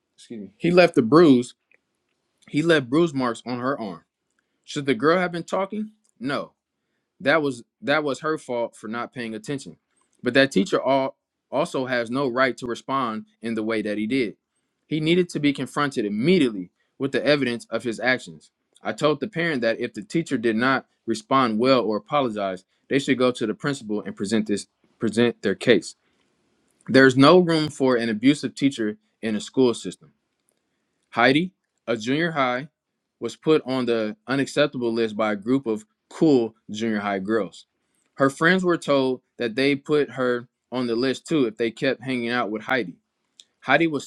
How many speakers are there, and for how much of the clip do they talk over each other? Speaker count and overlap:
1, no overlap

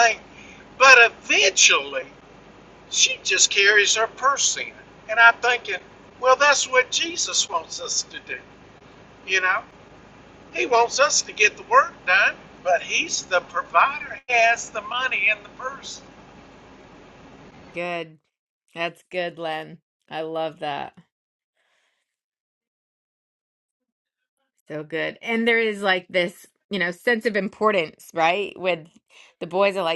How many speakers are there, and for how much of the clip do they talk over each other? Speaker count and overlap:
2, no overlap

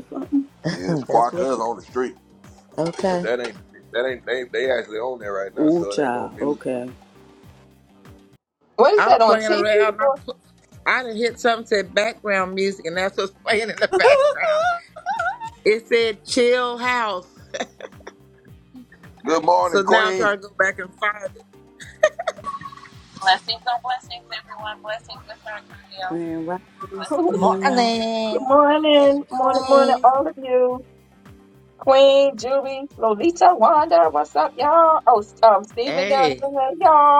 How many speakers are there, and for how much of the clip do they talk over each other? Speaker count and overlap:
6, about 16%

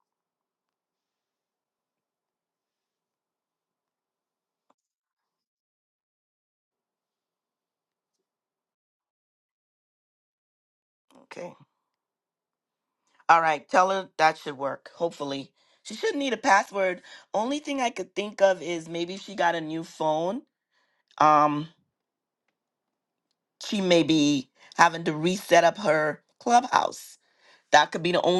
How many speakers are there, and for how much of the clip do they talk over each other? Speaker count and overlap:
1, no overlap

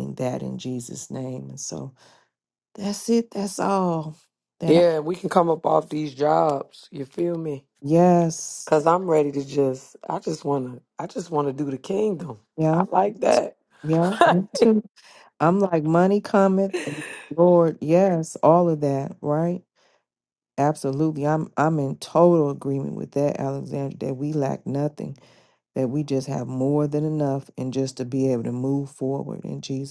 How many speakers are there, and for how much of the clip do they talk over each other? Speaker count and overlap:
2, about 1%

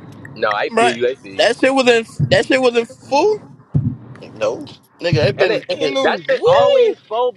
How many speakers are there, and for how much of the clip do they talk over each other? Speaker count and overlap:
3, about 24%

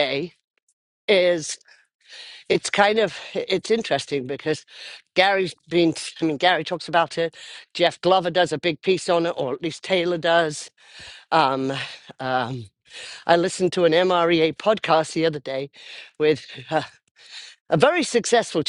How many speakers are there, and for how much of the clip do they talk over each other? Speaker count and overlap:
1, no overlap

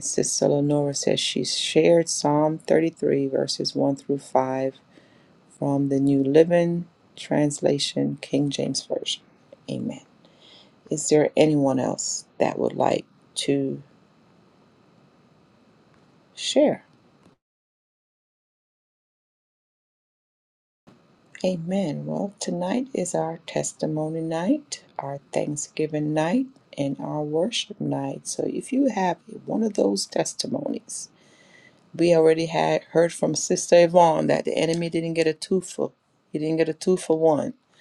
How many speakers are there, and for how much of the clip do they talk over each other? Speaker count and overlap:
1, no overlap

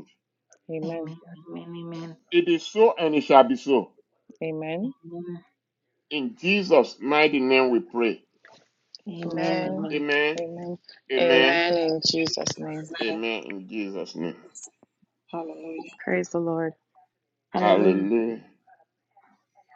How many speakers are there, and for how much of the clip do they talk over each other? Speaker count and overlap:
4, about 12%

